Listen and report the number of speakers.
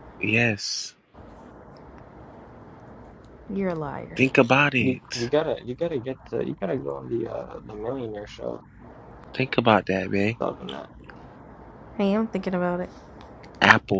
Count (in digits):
3